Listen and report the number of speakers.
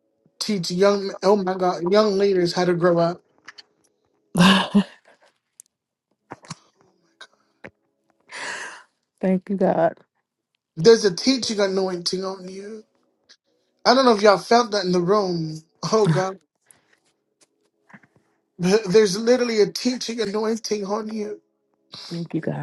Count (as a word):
two